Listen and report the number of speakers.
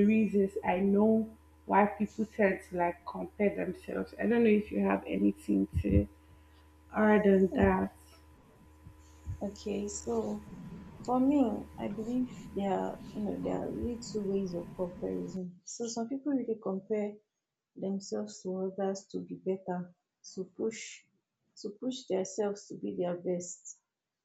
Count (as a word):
two